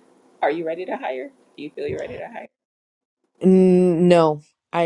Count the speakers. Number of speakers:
2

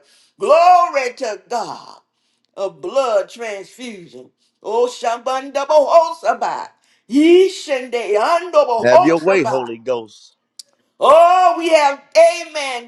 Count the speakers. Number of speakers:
2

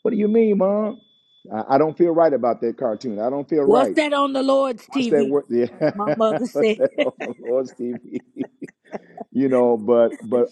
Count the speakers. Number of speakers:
2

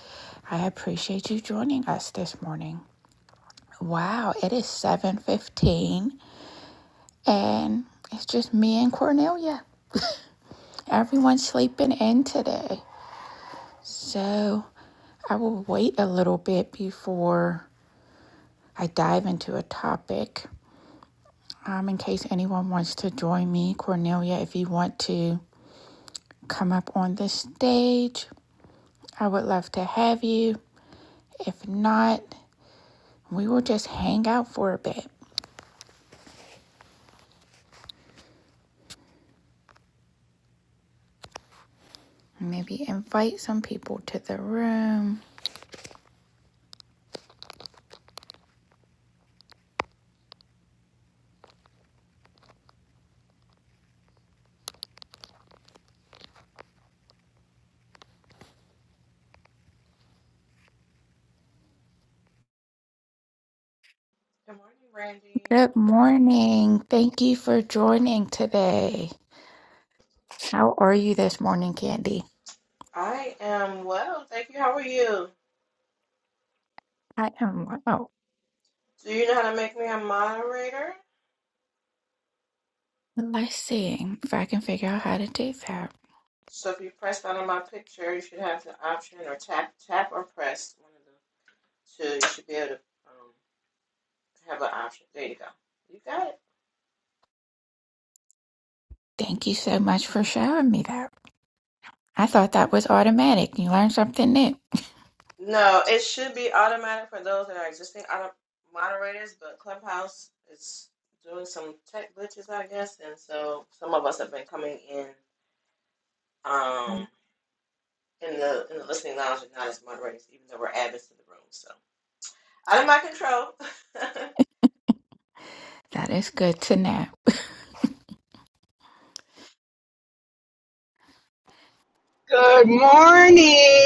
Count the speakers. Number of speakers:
3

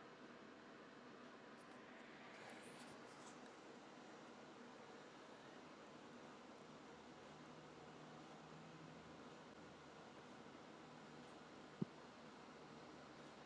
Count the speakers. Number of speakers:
0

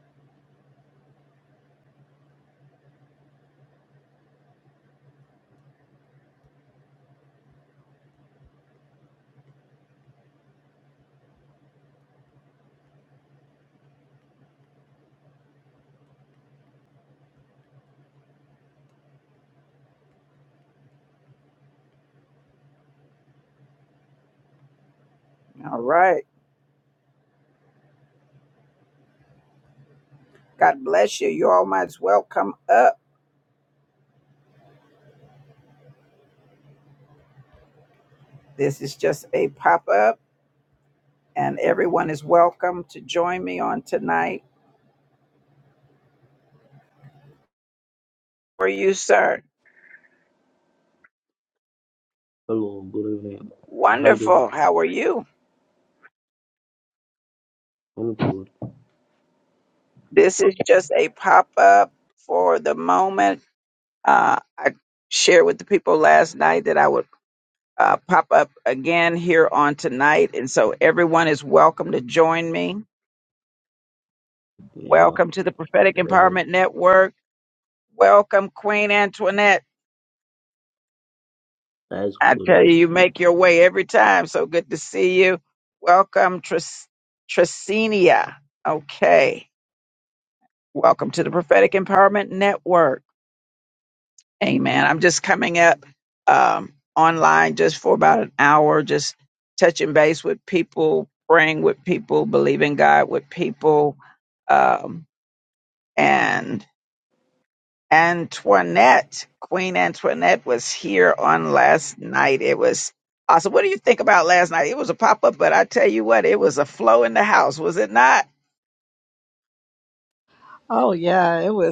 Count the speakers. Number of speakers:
3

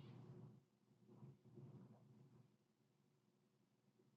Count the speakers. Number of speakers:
0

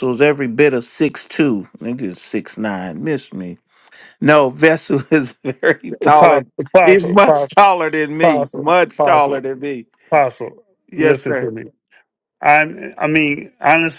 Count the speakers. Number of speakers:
2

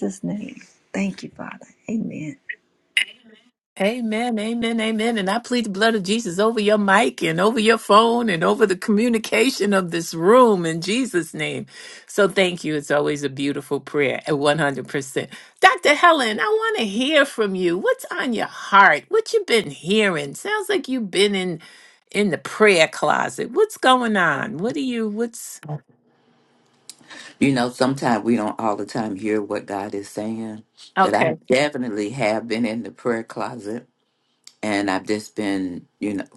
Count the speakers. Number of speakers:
3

